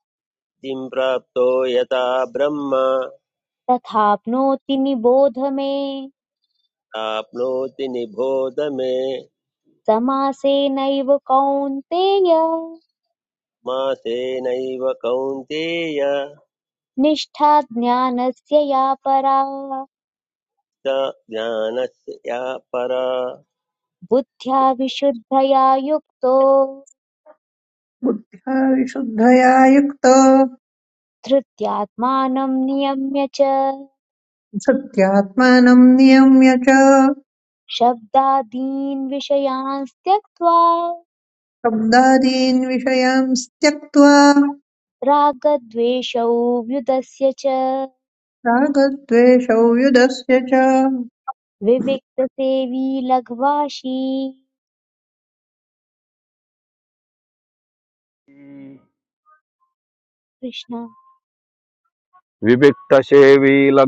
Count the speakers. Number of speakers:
four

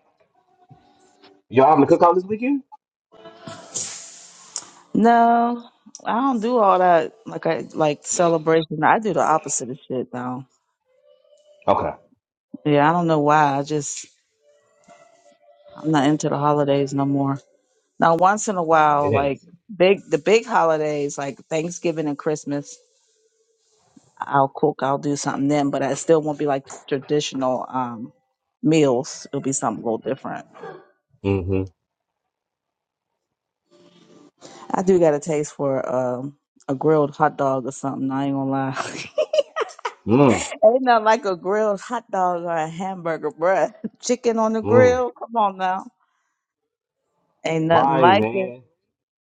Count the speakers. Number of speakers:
two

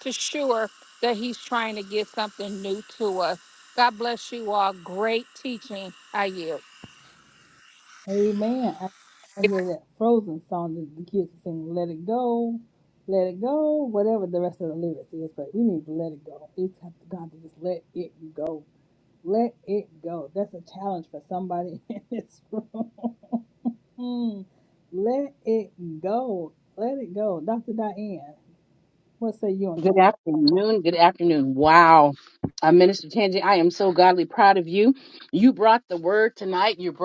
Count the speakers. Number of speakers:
three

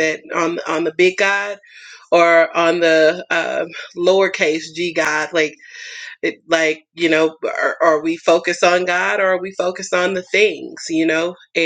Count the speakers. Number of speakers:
one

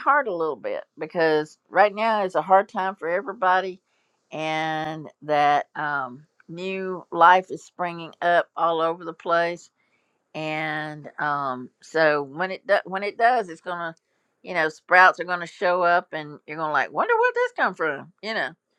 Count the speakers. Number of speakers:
one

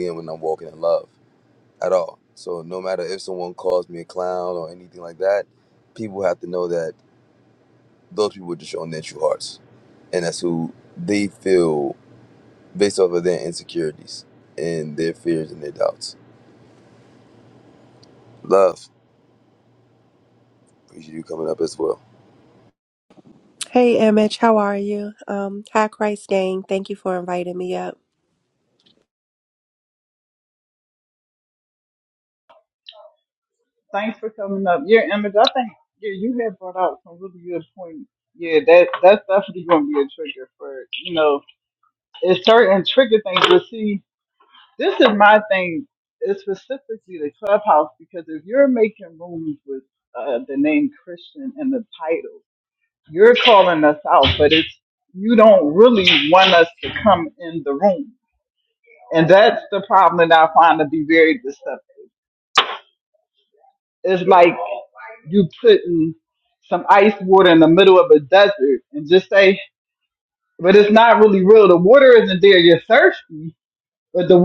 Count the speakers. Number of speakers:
three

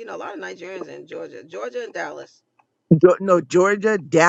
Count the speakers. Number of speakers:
two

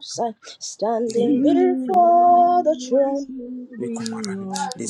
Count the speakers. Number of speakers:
three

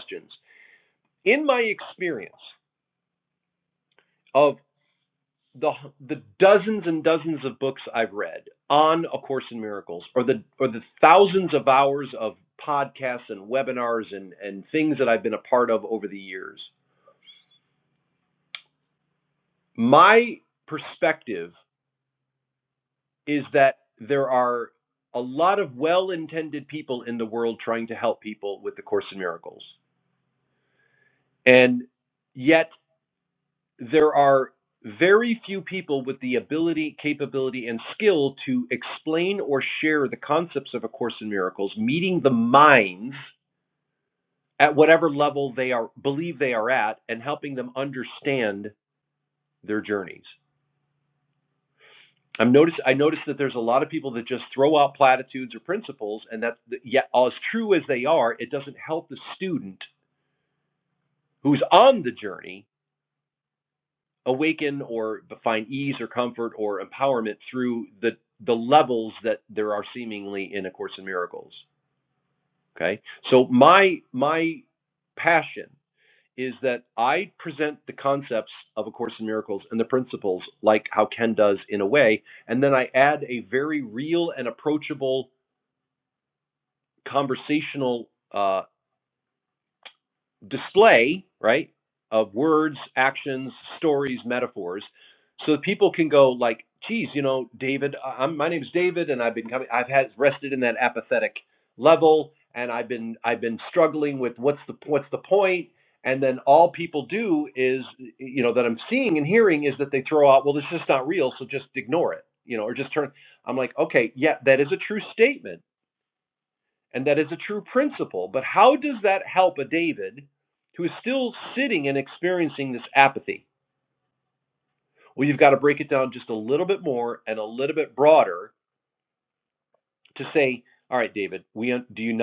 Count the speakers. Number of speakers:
one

